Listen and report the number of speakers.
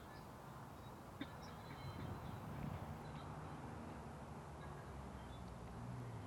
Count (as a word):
zero